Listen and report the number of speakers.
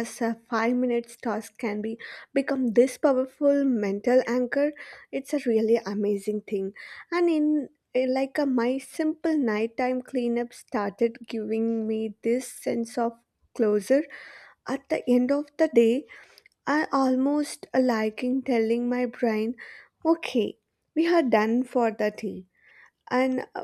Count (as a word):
one